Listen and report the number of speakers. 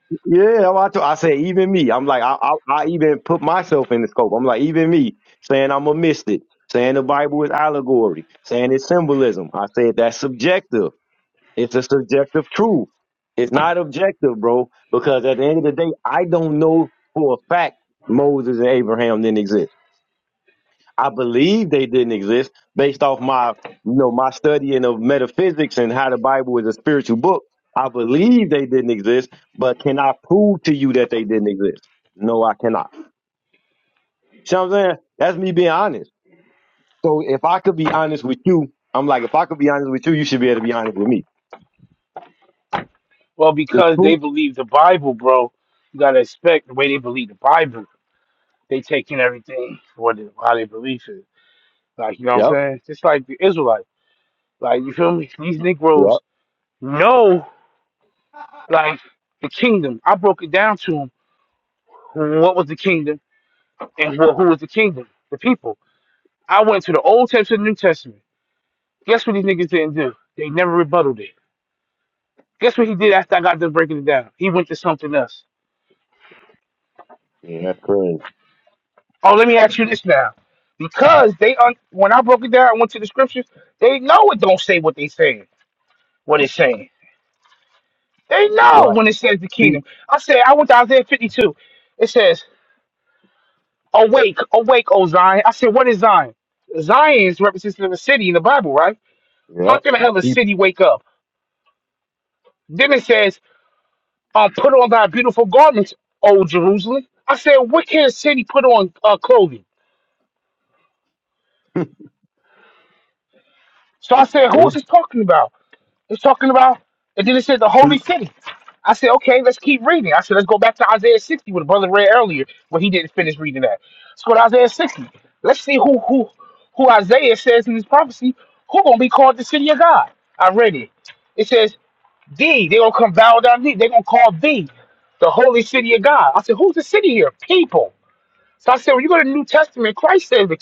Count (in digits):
2